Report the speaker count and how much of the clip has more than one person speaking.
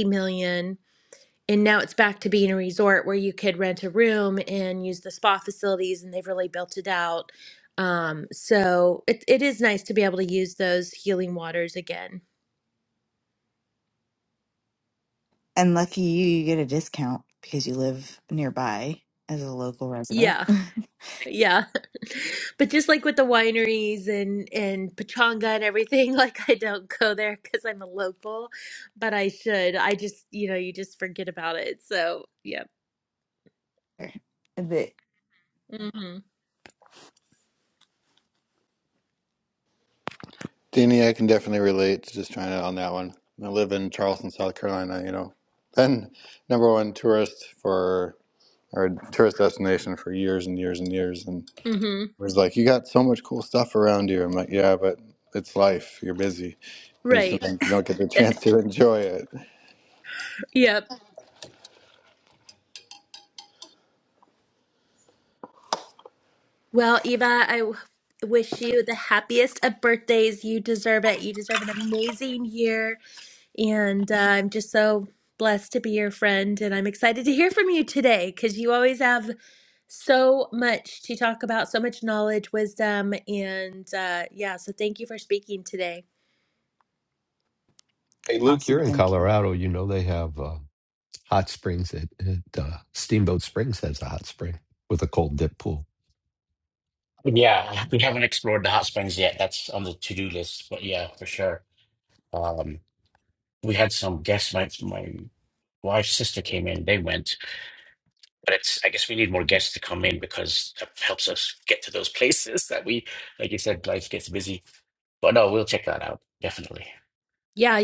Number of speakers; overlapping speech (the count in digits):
5, about 1%